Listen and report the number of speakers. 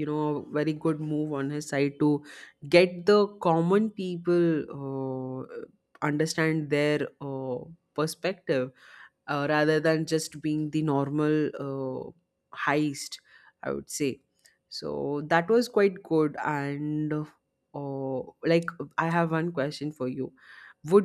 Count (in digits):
1